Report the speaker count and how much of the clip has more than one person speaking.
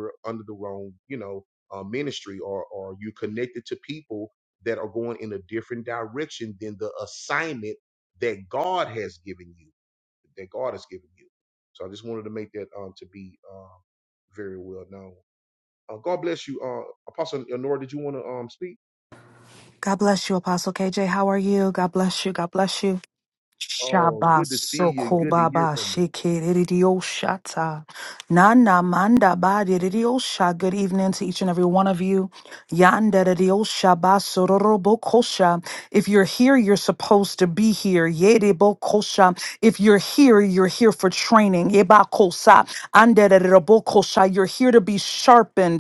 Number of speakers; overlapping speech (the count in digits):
2, about 5%